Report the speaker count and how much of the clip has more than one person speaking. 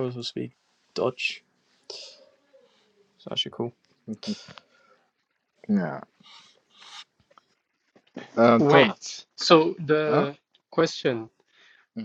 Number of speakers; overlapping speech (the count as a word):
three, about 5%